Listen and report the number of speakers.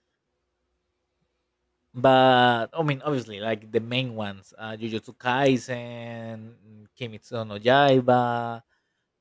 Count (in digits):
1